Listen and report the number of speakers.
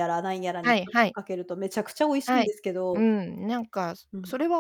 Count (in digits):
2